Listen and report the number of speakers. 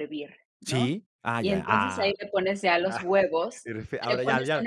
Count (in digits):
2